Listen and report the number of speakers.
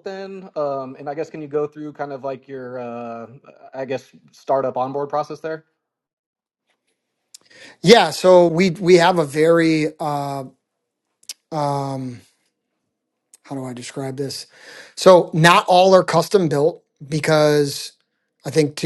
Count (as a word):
two